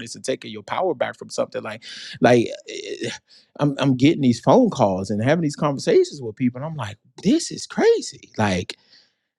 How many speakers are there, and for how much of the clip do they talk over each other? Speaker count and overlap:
1, no overlap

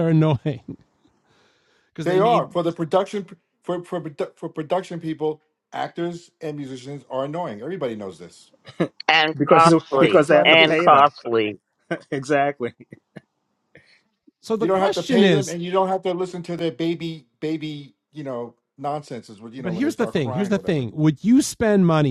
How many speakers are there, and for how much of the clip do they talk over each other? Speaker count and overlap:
4, about 19%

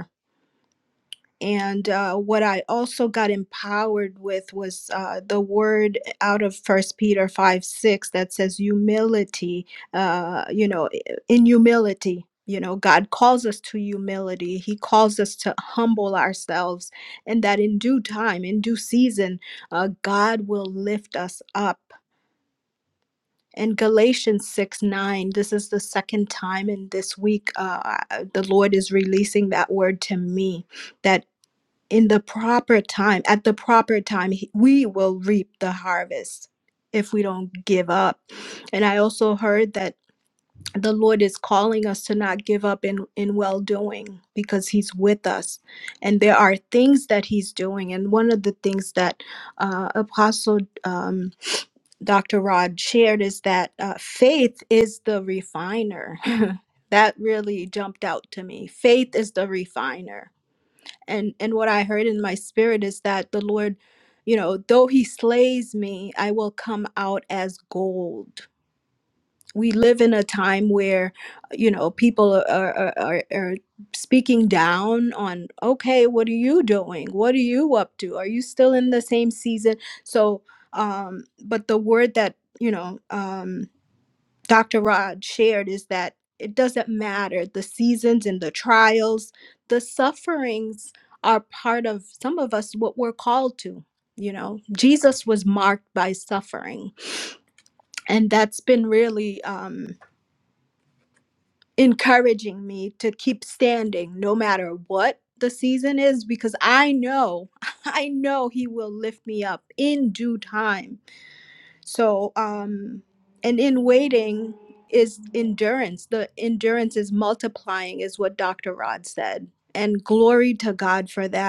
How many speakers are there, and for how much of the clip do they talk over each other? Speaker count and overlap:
1, no overlap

